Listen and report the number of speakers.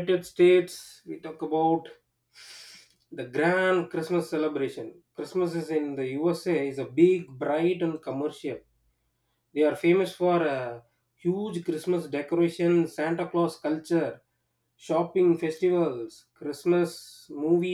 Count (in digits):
1